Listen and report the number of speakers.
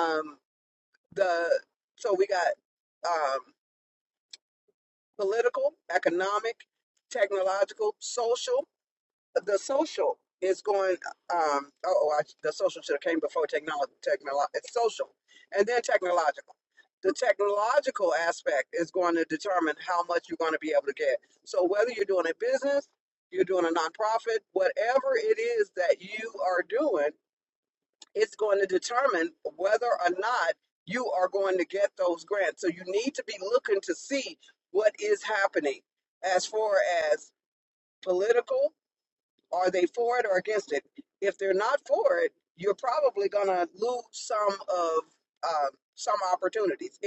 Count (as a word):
one